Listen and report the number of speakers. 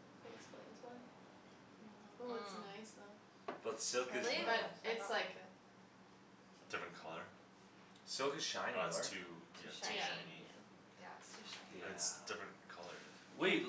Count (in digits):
4